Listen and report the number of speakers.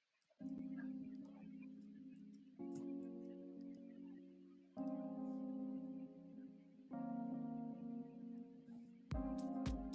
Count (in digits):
0